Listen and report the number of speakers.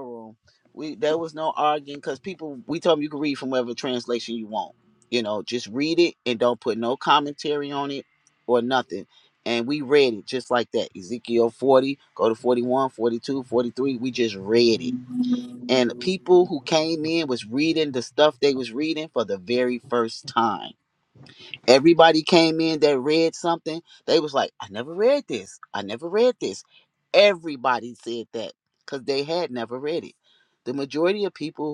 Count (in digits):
1